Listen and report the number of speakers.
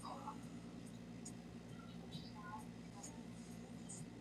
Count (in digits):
0